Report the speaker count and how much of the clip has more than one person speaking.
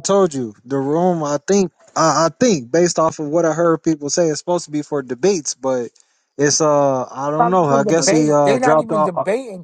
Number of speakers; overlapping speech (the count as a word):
two, about 18%